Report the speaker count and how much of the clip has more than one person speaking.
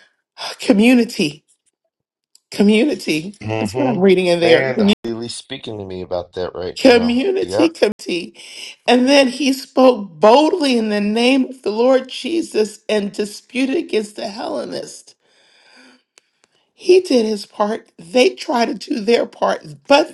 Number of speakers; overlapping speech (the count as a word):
two, about 9%